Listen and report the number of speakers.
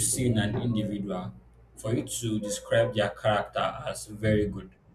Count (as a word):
one